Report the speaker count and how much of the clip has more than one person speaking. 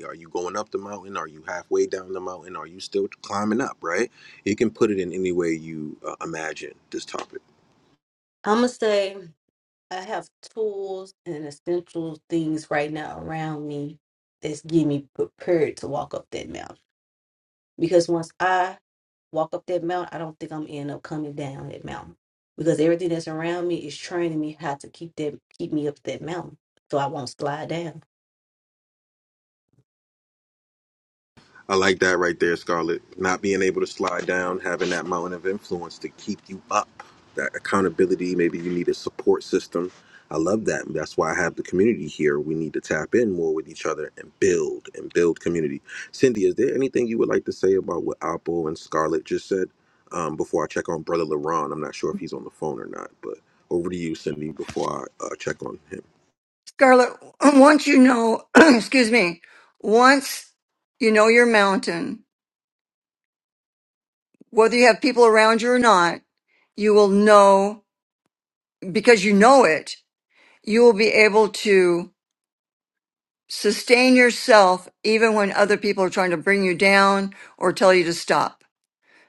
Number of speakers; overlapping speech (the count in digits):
3, no overlap